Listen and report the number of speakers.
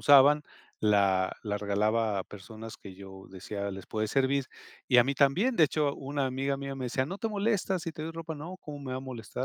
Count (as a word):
one